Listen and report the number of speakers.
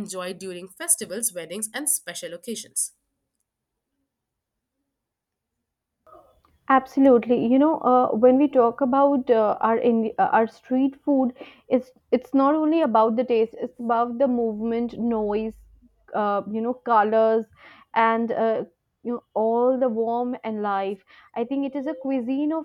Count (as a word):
two